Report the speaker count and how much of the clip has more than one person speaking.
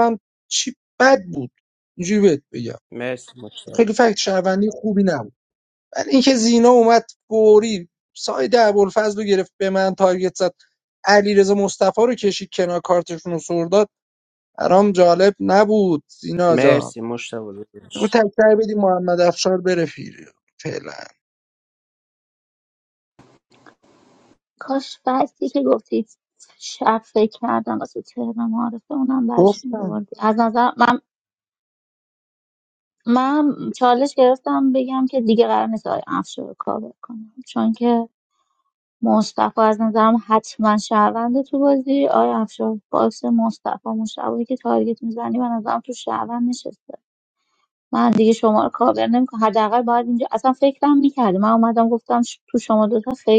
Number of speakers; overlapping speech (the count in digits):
3, about 2%